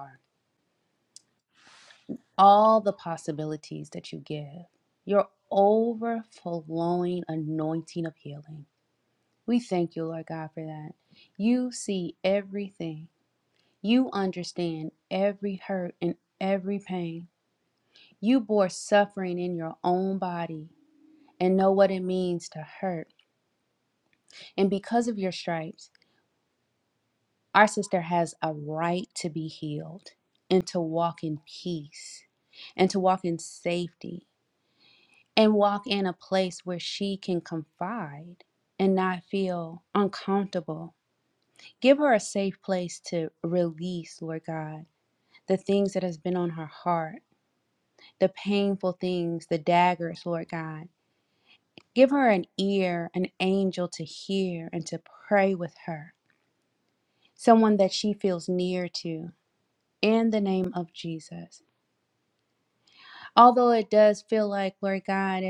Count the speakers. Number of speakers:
1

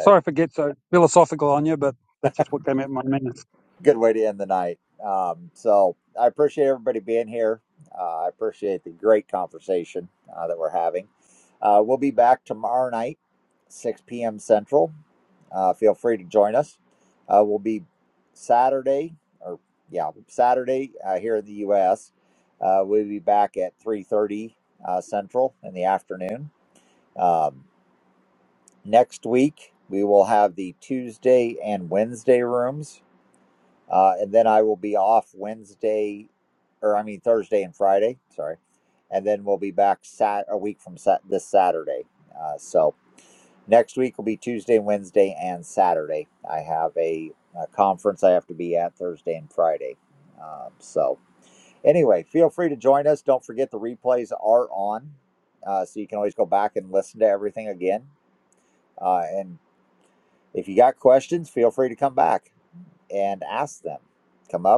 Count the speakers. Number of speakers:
2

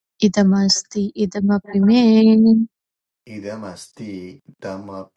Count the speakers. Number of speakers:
2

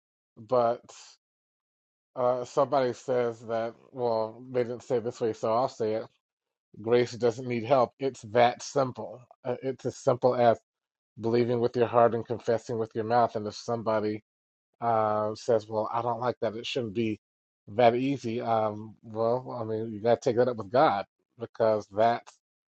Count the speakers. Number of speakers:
1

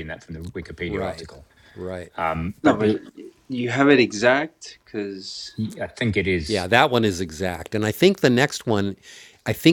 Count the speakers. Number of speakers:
3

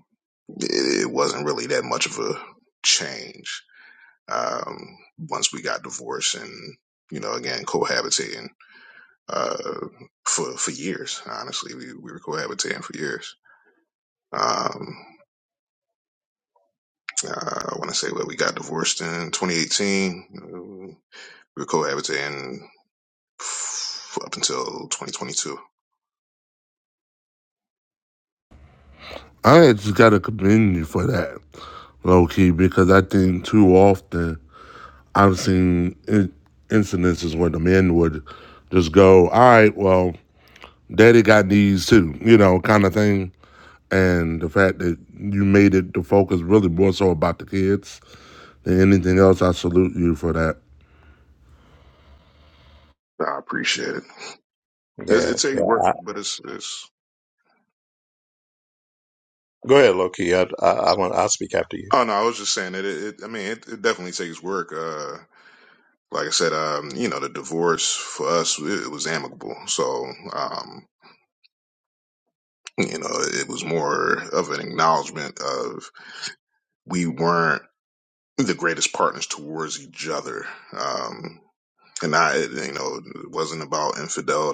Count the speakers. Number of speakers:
3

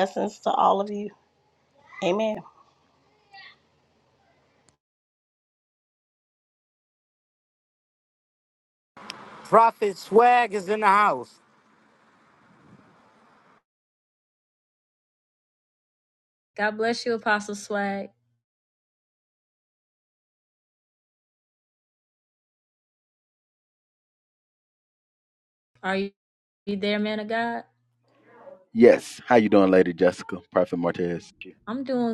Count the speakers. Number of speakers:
4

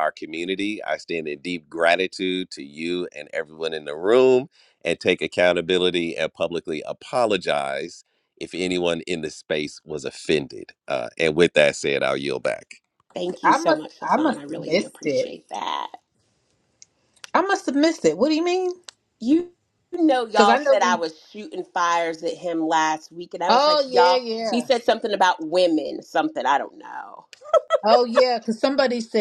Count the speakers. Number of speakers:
3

